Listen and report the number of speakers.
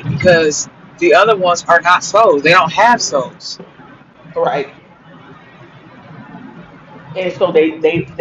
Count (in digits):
2